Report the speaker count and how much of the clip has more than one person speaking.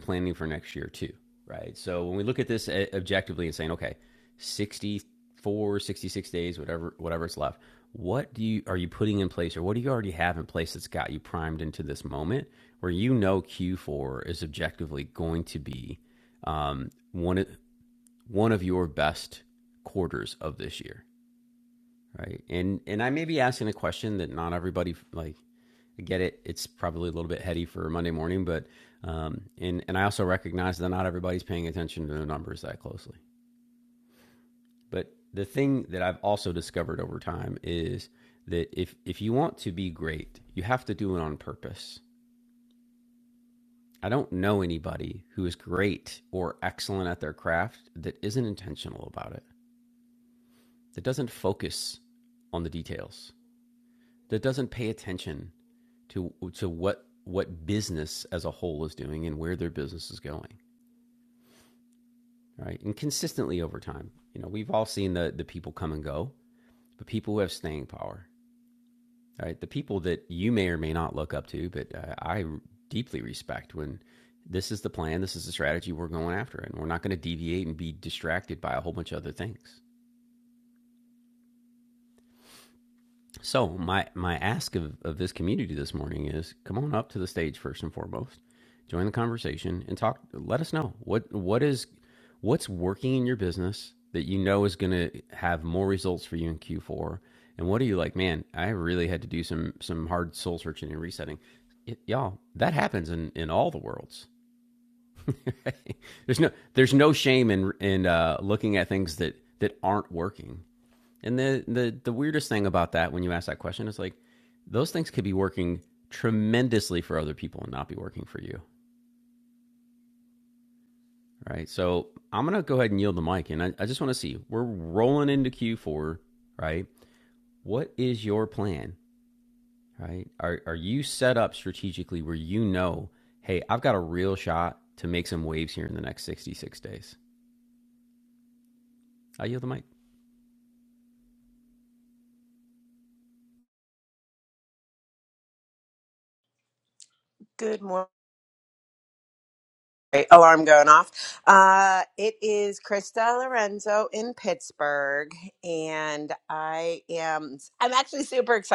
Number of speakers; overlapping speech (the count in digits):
2, no overlap